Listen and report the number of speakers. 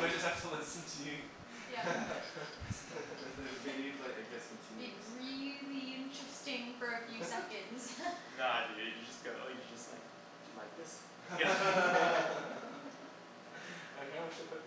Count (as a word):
four